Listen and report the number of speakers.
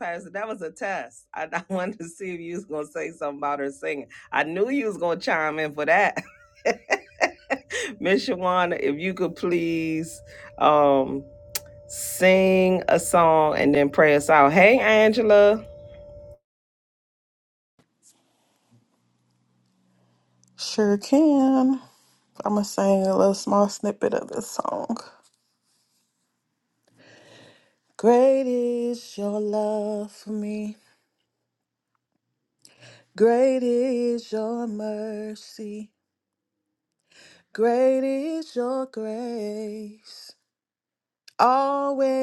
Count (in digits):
2